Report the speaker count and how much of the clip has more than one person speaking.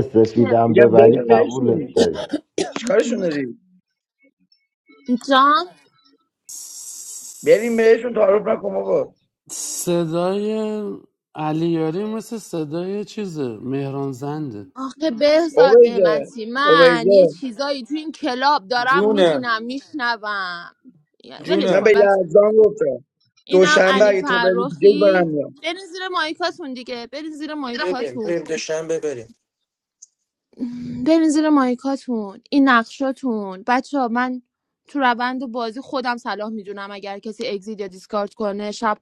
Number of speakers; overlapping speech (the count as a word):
five, about 16%